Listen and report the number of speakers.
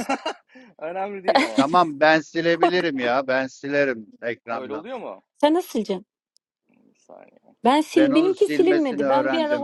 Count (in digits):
3